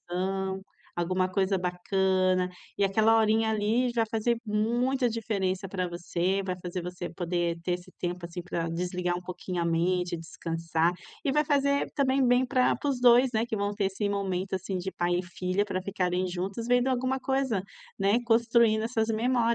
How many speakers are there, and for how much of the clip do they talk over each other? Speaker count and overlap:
one, no overlap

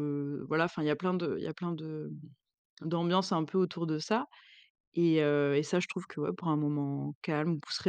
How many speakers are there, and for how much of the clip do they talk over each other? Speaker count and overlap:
one, no overlap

